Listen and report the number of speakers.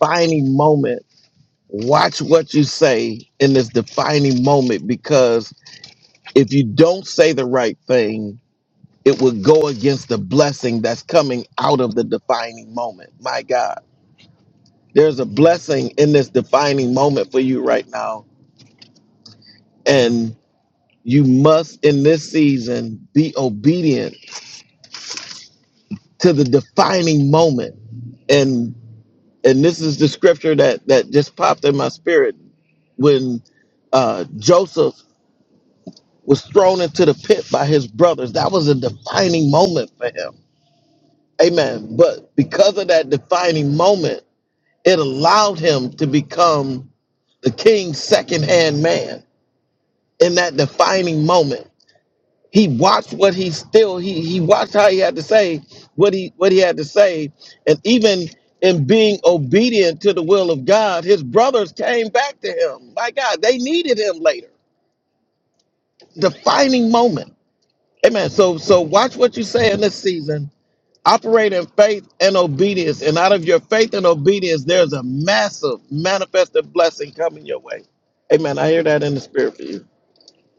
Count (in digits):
1